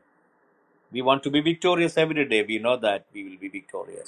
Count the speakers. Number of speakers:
1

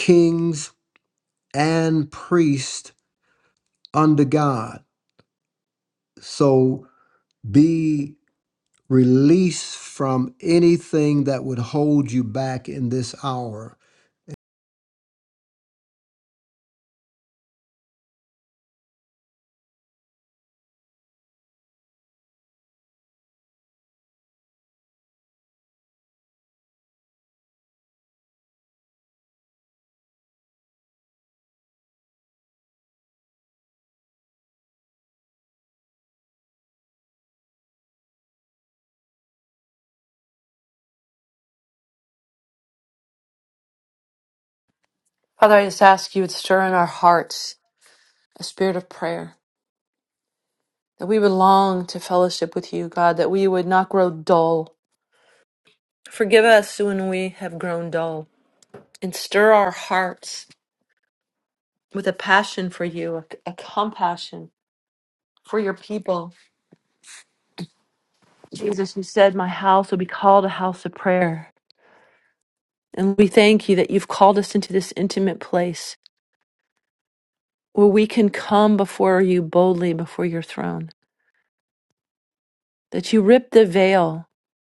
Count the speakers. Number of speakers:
2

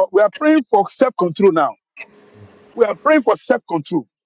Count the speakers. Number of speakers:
1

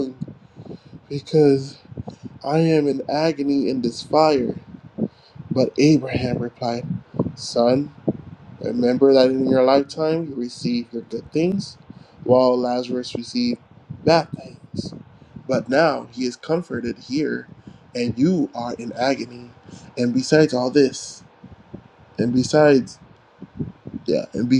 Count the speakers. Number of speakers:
1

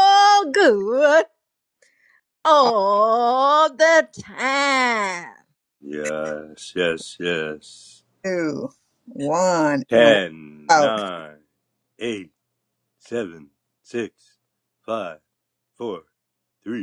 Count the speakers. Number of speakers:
3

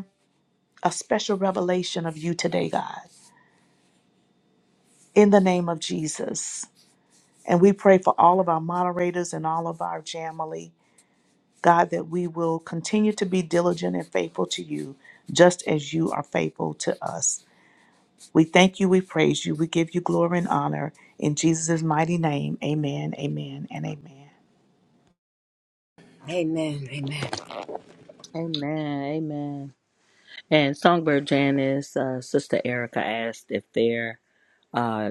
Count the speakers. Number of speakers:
3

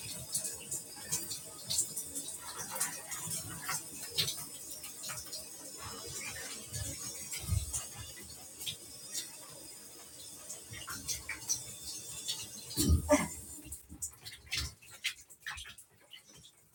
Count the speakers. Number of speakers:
0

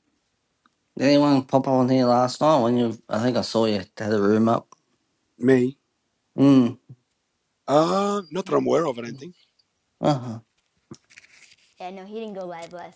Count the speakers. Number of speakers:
3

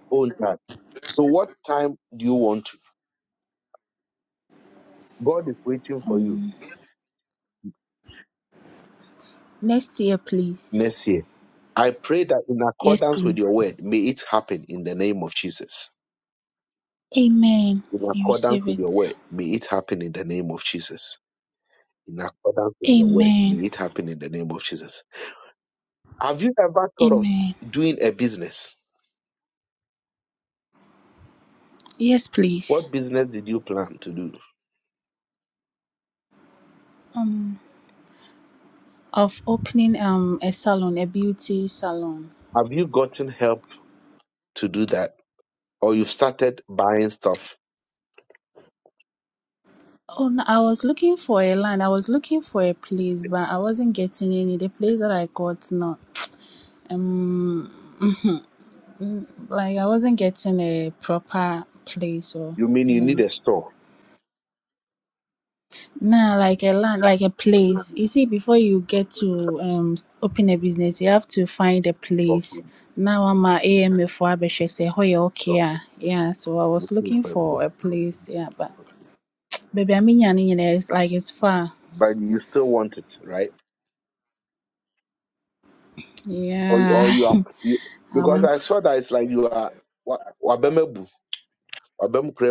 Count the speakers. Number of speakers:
2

